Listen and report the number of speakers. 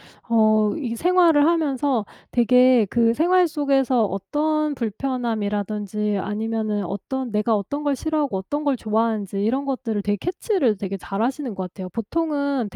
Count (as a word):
one